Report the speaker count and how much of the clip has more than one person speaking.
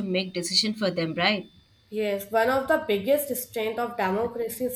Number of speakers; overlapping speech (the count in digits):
2, no overlap